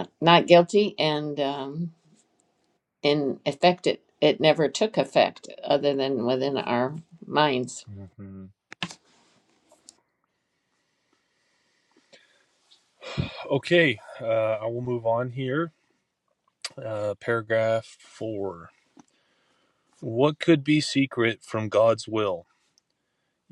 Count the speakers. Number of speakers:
two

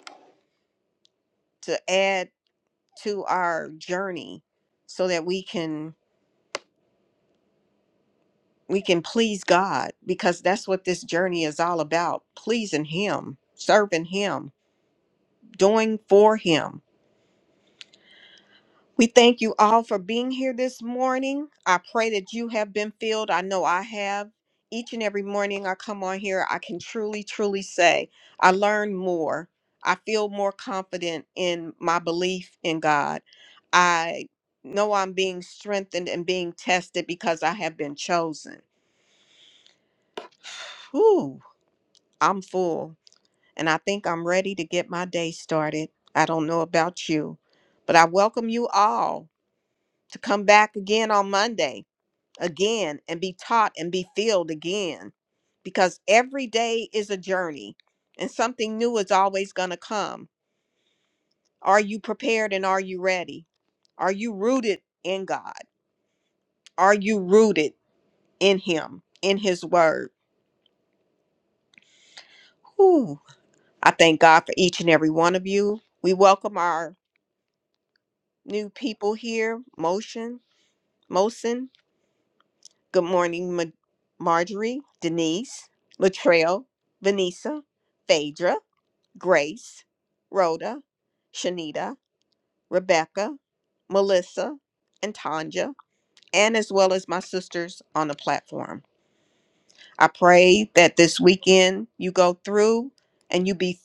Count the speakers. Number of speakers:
one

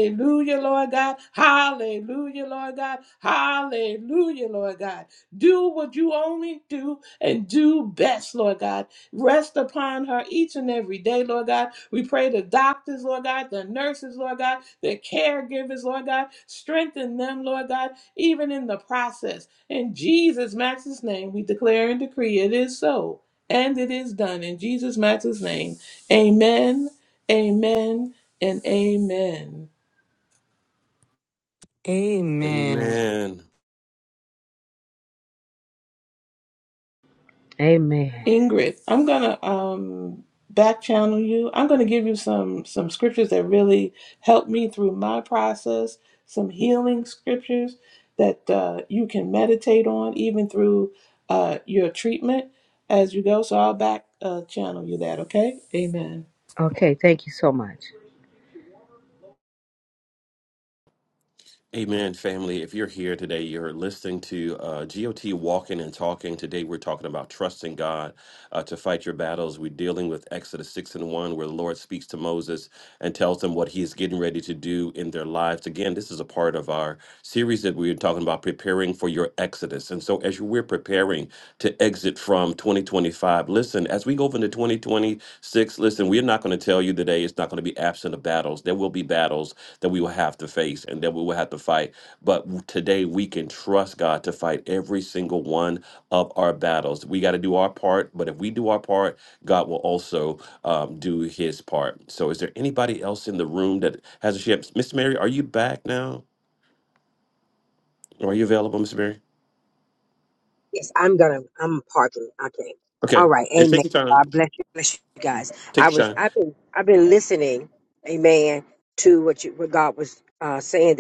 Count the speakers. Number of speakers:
five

